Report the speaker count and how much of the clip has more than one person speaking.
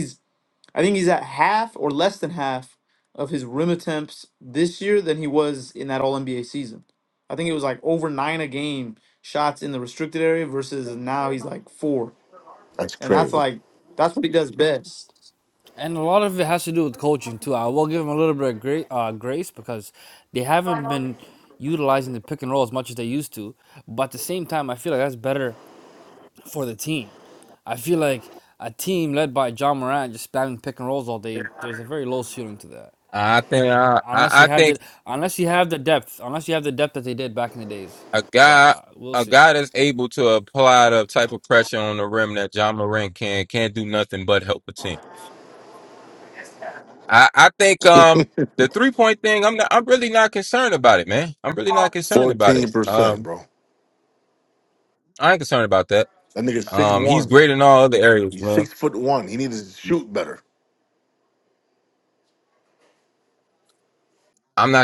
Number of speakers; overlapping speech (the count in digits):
4, about 6%